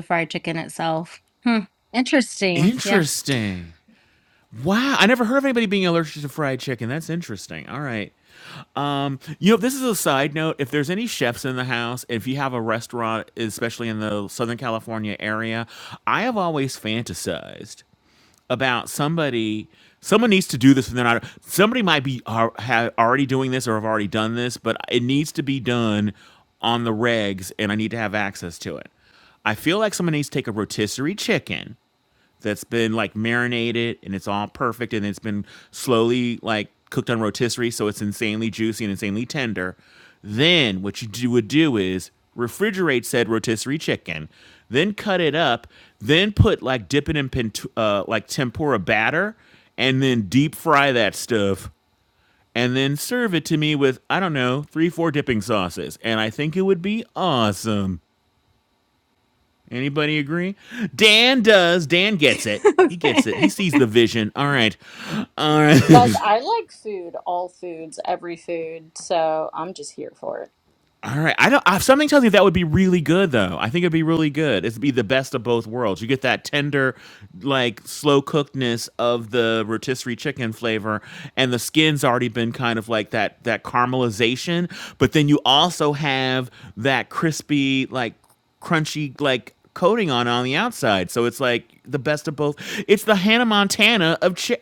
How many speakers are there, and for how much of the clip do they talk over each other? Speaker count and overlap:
three, about 1%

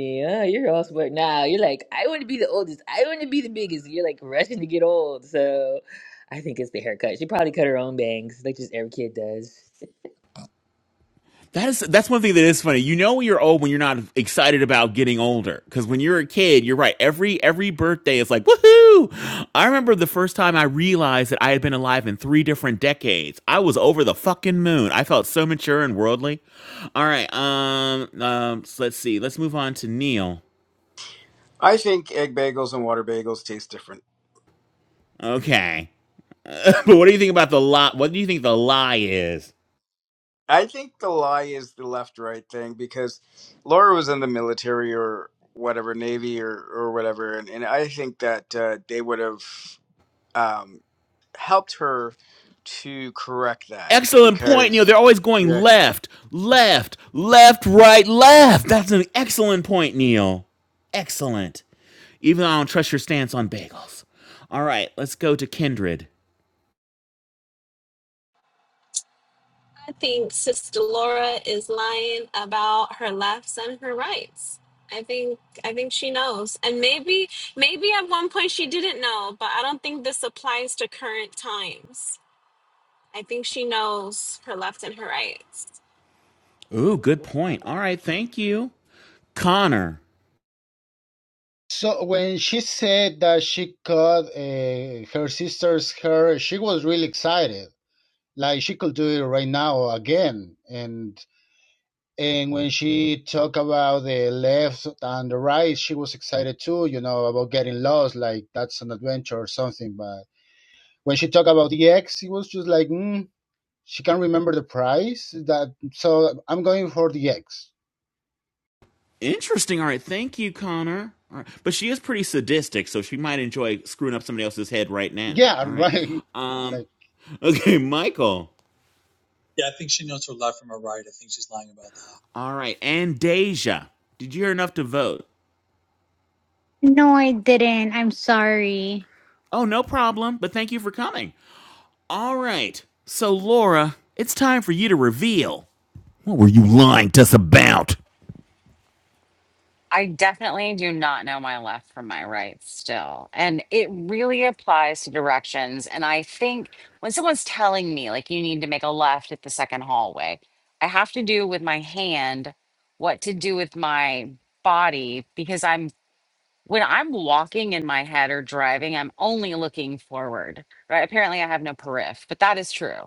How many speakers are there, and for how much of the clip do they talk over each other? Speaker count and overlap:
eight, about 1%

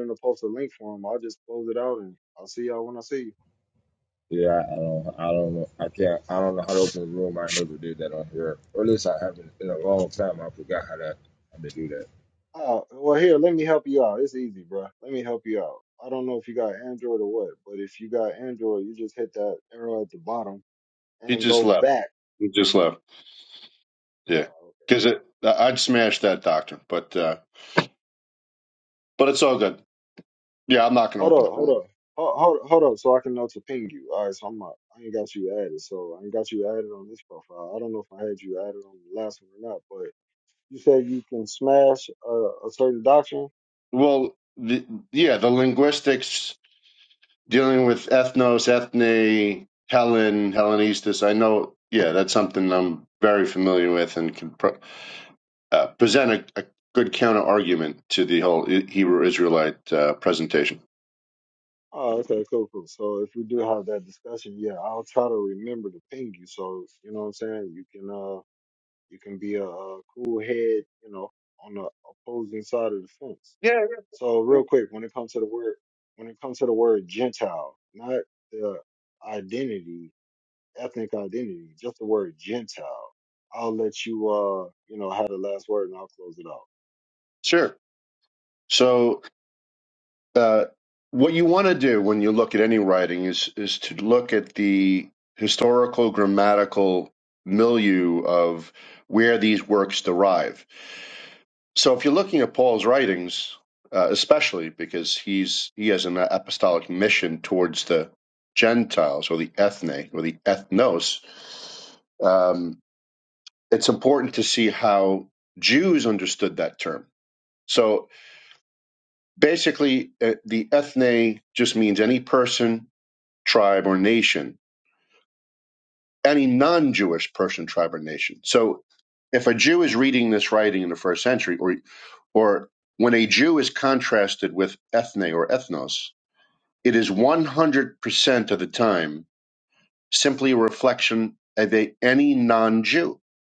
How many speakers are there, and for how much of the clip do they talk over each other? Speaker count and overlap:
three, about 1%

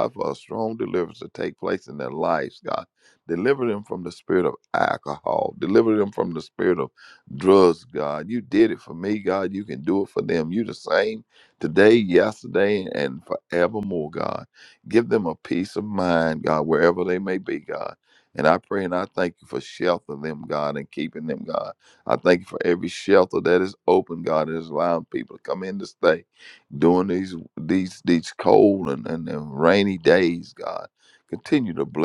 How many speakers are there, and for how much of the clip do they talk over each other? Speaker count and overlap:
one, no overlap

